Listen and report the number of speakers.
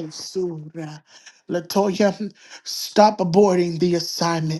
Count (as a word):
one